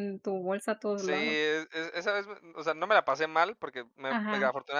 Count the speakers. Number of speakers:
2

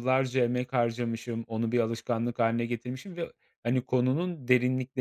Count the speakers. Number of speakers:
1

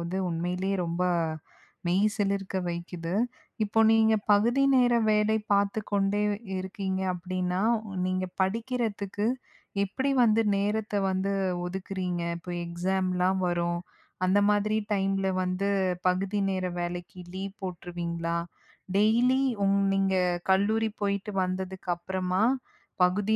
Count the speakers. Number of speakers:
1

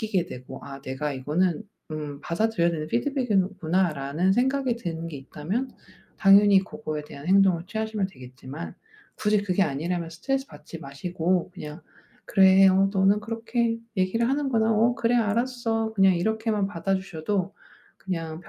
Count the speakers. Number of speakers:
1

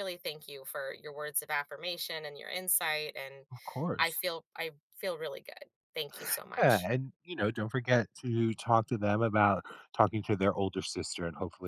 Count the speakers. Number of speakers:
2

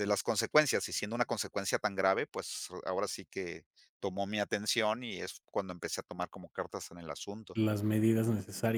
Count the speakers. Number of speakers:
2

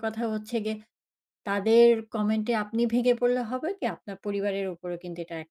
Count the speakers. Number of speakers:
1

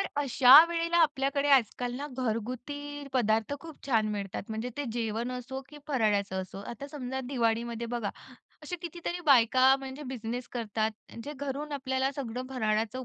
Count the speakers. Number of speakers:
1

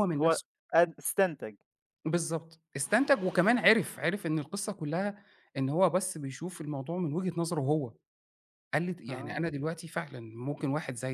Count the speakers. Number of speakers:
2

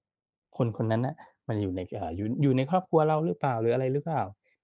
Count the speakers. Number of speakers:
1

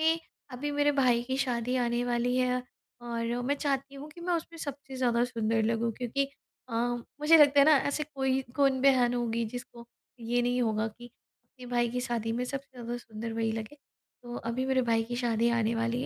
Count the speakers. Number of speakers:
1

